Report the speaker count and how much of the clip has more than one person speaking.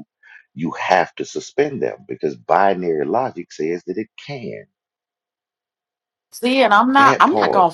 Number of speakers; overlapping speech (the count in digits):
2, about 9%